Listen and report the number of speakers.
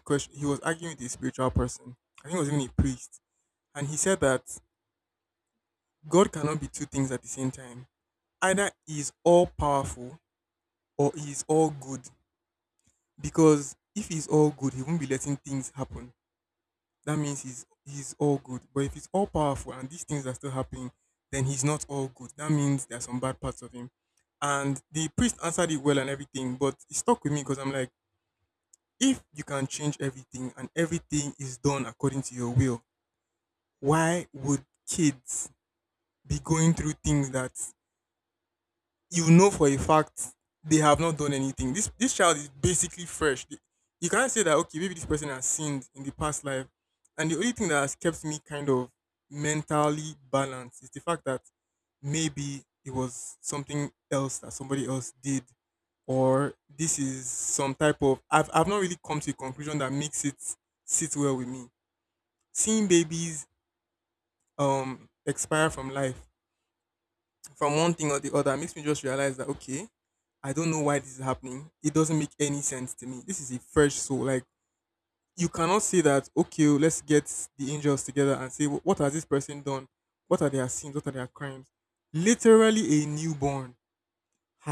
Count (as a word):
one